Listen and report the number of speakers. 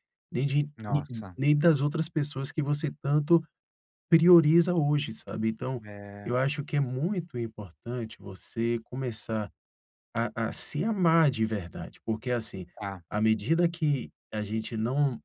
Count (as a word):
two